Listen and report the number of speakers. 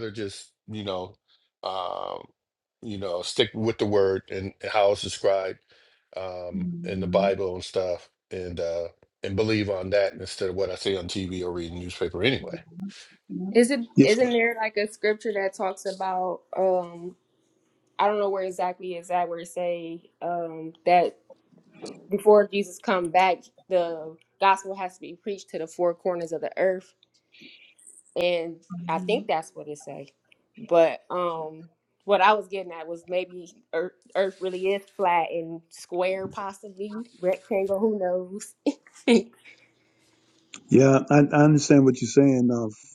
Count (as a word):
three